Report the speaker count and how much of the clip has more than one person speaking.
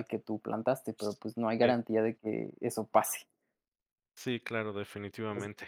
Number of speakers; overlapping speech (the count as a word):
two, about 4%